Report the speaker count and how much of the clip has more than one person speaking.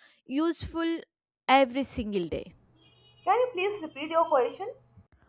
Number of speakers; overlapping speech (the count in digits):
2, no overlap